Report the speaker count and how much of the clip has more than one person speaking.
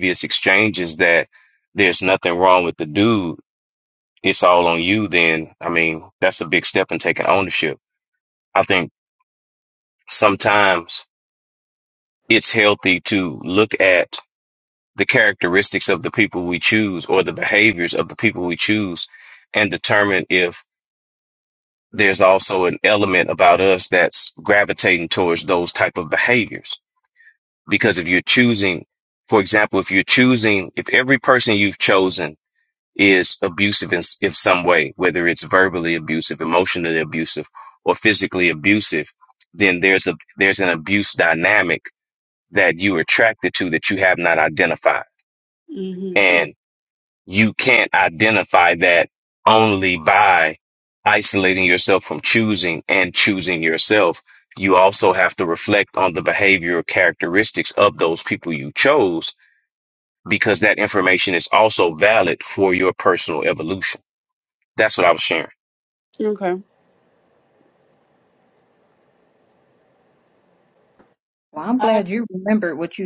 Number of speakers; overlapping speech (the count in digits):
3, under 1%